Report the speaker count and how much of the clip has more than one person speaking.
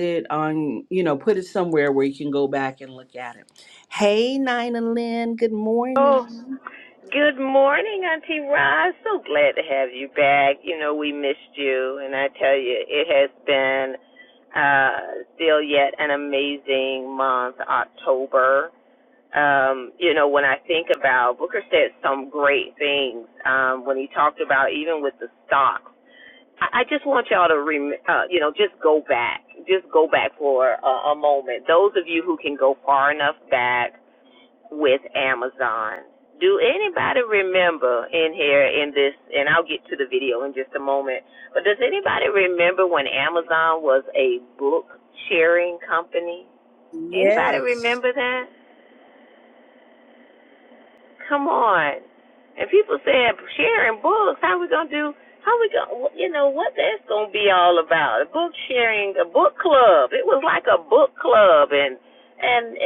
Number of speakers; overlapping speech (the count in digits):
2, about 1%